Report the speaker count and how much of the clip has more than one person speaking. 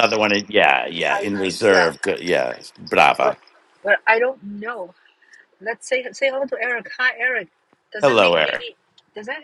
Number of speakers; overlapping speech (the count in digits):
2, about 12%